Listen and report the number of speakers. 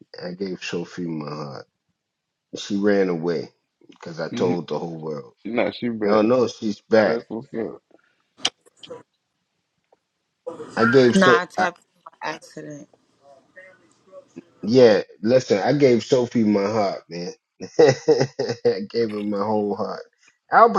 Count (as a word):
three